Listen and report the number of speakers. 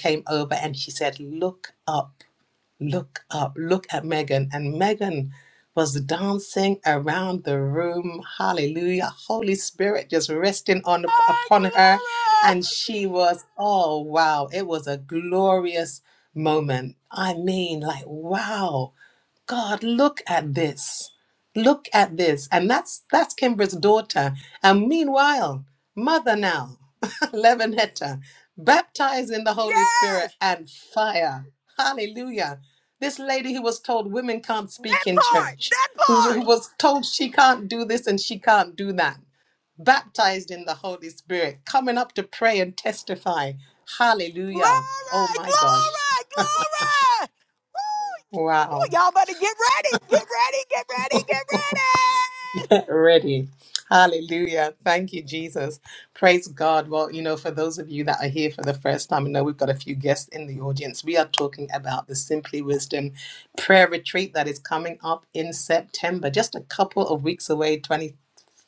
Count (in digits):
2